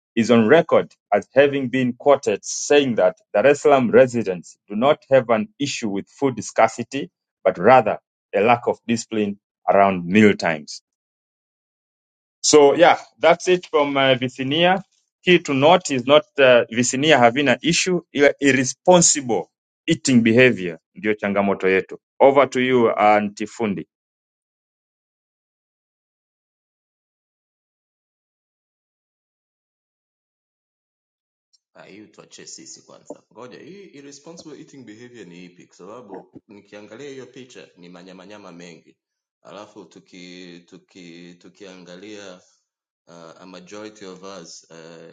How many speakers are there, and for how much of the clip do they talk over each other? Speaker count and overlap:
2, no overlap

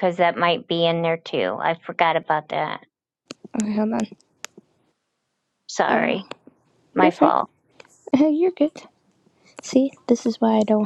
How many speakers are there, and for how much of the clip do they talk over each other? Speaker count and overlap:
2, about 6%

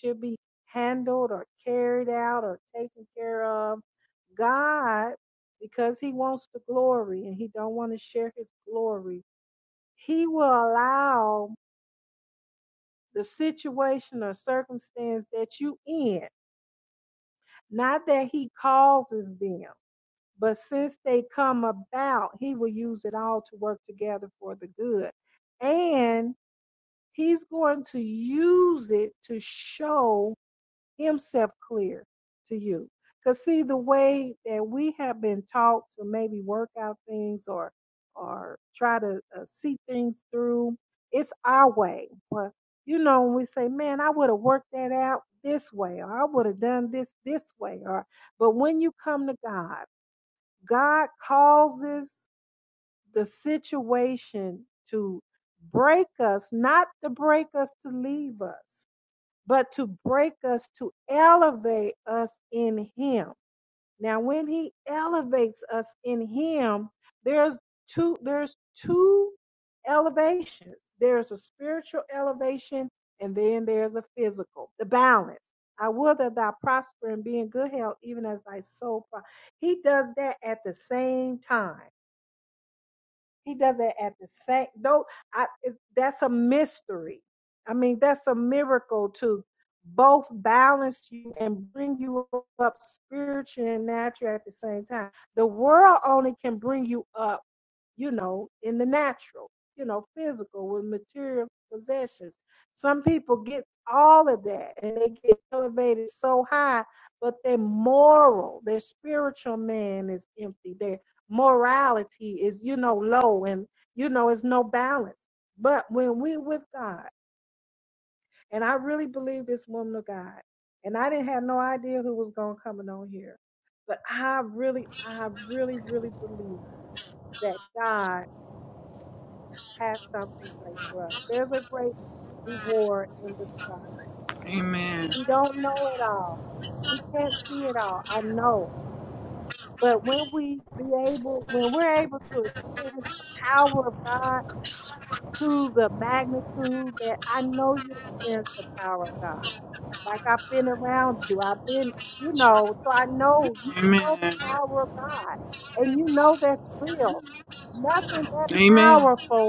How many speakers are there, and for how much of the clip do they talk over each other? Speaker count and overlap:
2, about 1%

